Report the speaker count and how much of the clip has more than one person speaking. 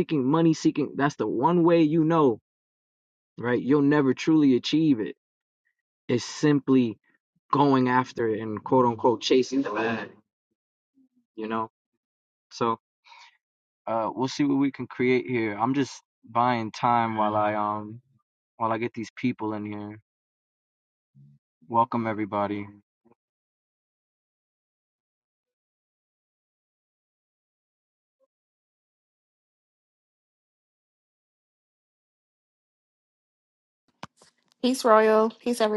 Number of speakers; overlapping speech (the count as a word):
two, no overlap